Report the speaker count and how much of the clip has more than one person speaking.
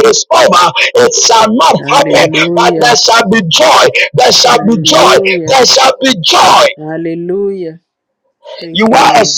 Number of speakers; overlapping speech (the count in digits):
2, about 29%